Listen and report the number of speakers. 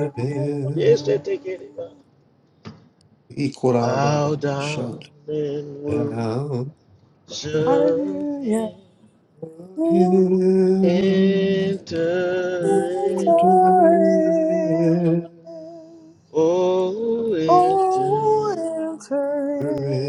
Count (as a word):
three